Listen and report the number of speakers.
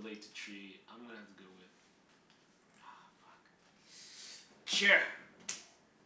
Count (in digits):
1